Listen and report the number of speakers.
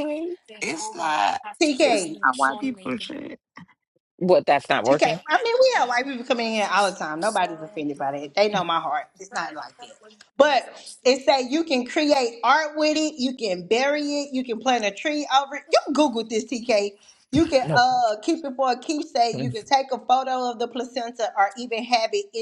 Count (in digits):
3